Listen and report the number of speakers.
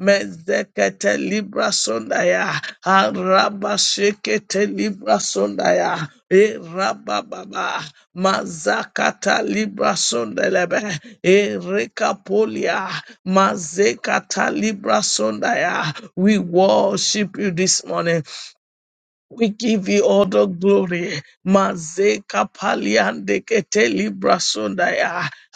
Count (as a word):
one